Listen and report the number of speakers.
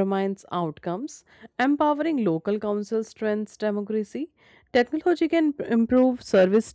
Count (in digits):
1